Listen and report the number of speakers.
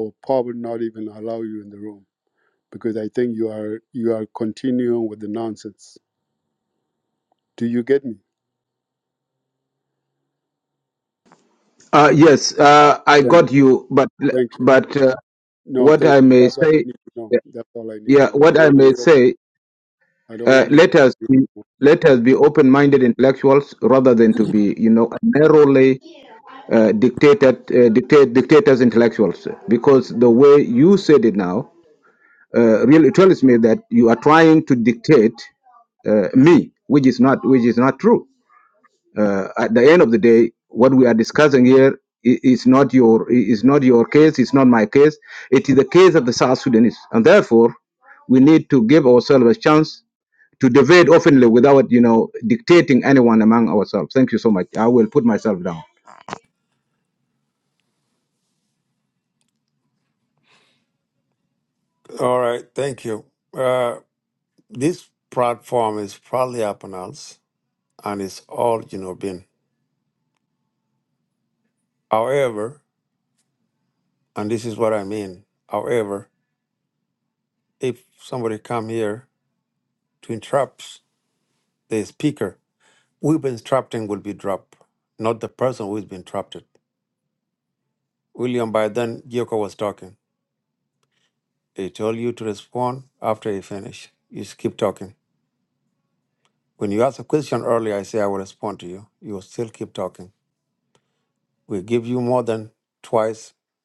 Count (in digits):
3